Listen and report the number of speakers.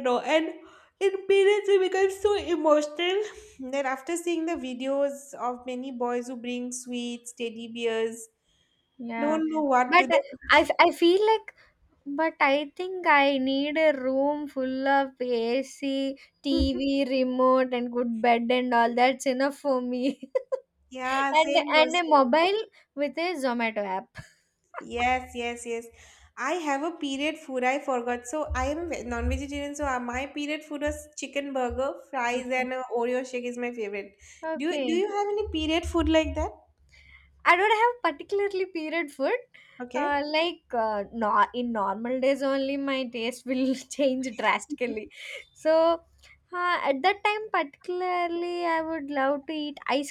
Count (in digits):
2